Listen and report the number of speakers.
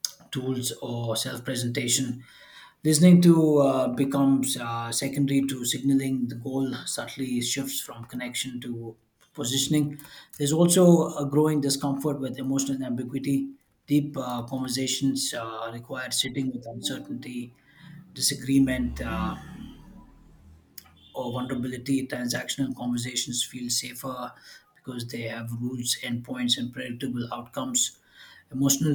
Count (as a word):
one